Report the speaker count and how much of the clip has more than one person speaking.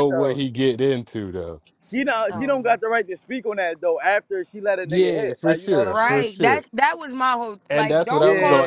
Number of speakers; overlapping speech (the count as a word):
three, about 39%